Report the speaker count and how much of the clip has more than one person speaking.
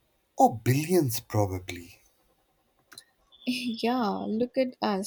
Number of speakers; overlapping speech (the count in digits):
2, no overlap